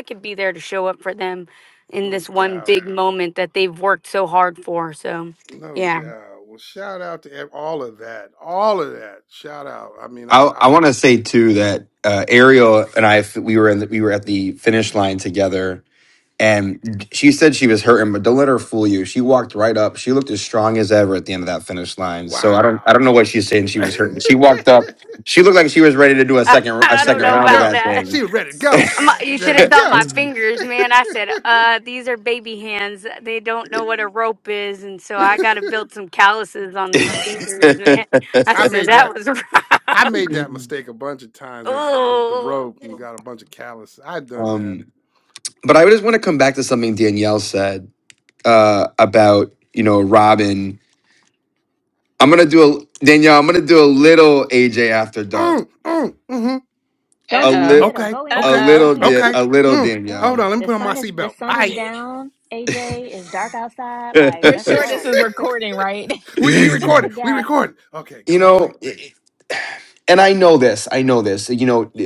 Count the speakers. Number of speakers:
5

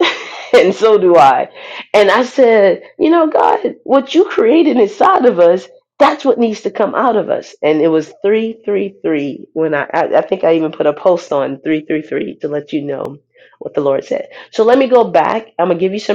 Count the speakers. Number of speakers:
1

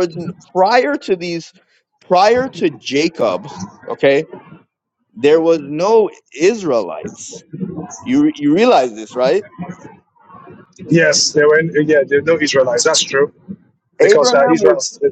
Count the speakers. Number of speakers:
2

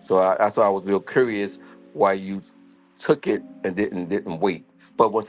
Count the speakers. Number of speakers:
1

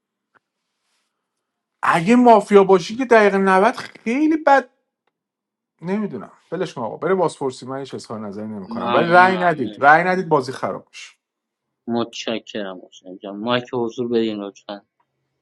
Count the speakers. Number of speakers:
2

